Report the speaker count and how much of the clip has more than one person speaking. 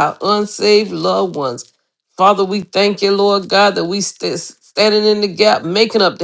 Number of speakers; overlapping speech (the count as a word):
one, no overlap